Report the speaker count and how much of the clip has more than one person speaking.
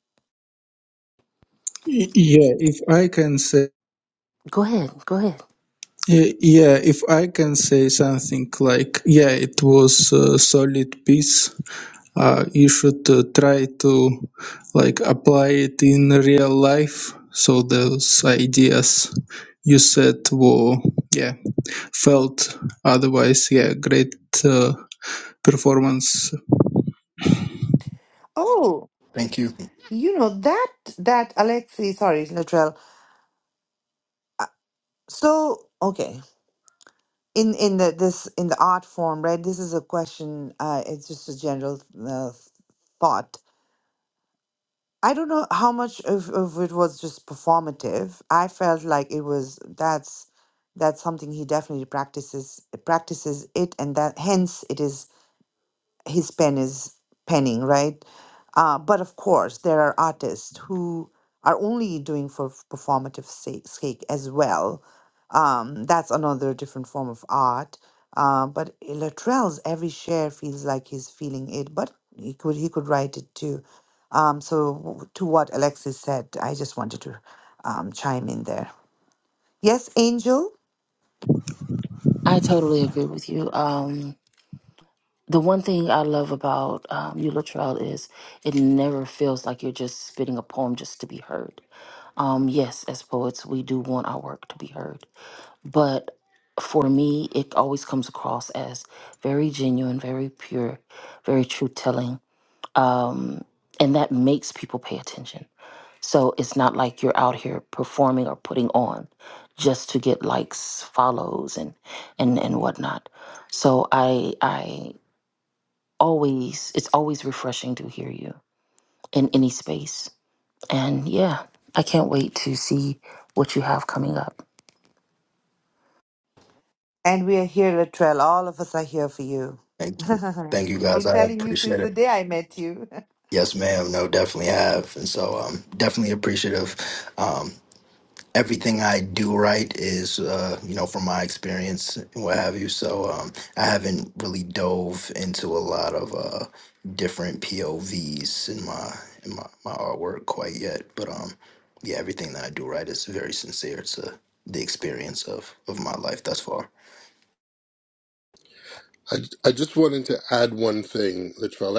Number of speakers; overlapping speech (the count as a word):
five, about 1%